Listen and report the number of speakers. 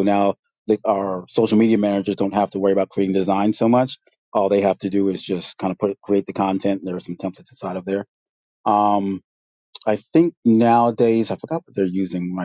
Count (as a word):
one